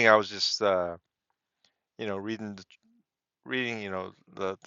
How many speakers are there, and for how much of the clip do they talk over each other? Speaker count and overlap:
1, no overlap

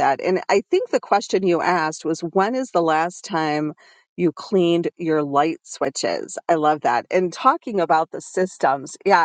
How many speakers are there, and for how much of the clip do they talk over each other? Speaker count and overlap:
1, no overlap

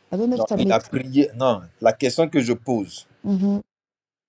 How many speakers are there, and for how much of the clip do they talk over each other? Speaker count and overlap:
2, about 11%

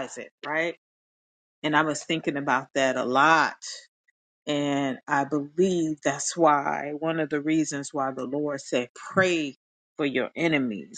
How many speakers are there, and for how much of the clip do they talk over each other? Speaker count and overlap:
1, no overlap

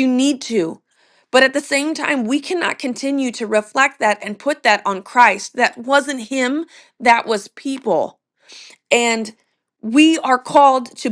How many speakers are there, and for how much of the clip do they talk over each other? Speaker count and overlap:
1, no overlap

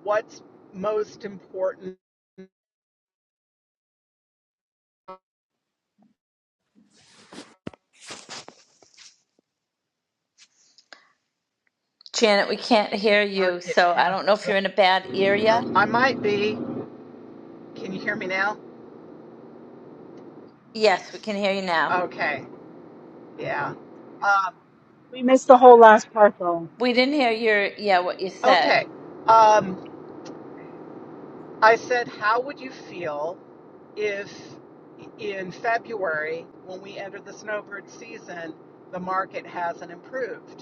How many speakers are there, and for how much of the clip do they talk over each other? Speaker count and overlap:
3, about 3%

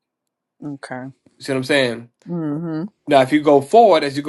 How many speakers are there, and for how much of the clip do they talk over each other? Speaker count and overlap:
2, no overlap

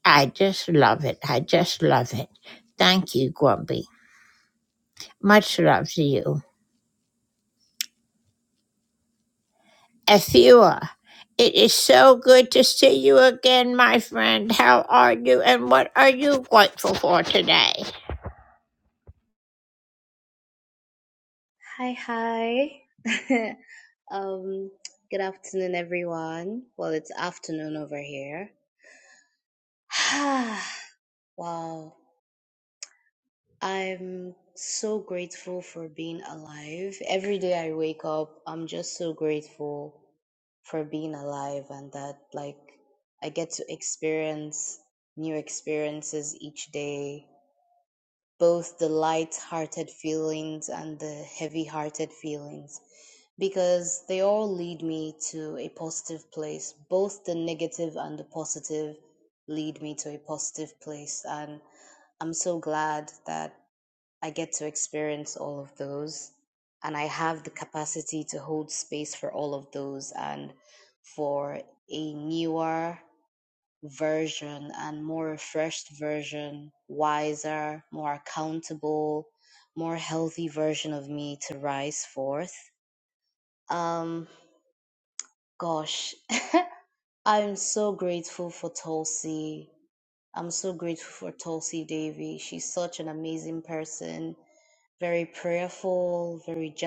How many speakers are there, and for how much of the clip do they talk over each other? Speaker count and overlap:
2, no overlap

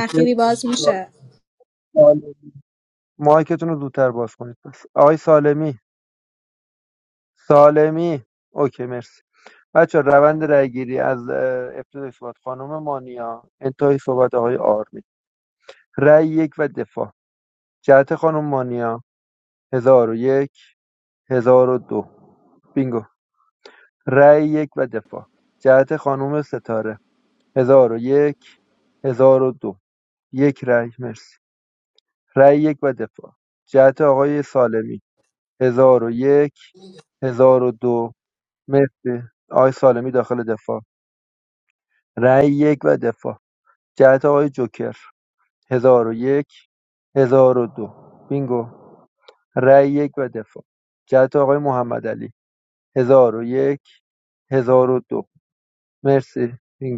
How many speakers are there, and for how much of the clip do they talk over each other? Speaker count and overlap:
2, about 1%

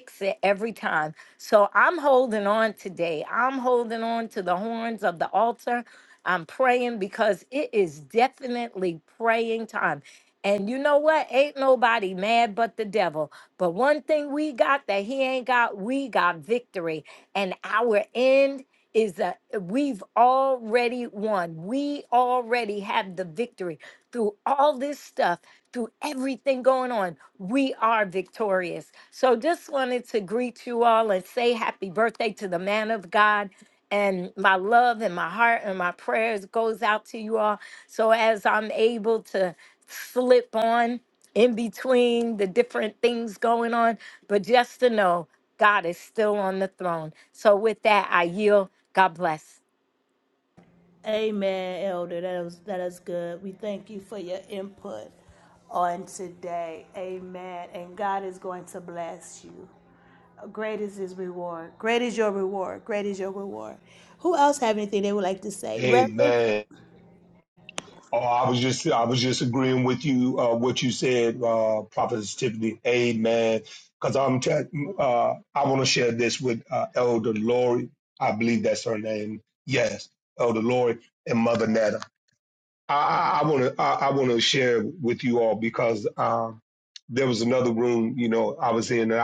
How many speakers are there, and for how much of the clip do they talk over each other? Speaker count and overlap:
3, about 1%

